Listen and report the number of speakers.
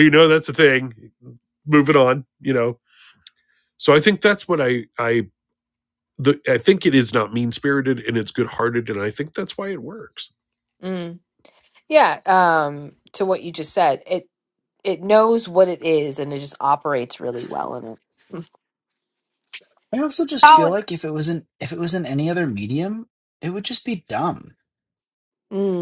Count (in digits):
3